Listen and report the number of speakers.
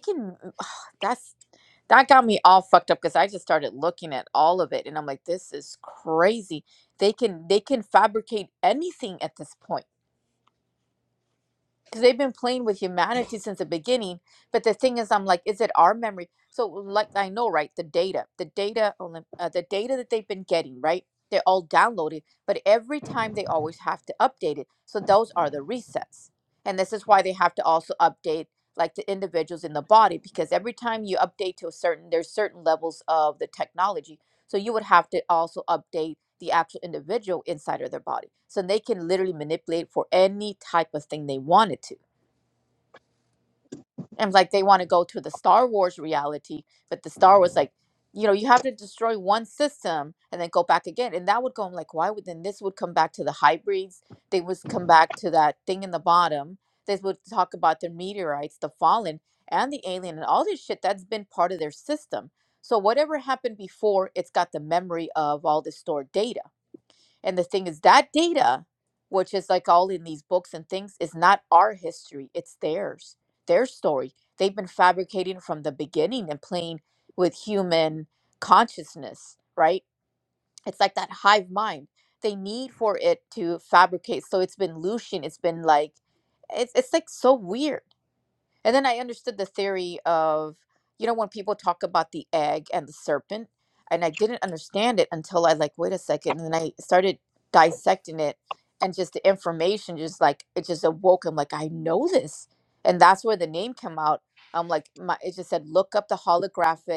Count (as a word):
one